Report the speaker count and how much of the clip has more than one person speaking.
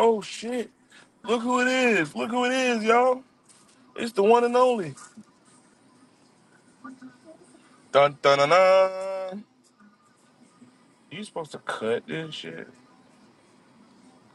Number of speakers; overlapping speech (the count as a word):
one, no overlap